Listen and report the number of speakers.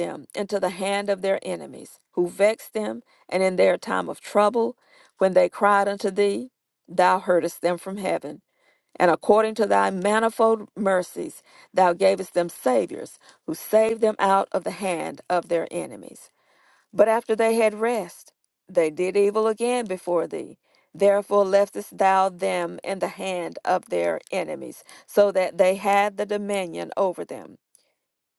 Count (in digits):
1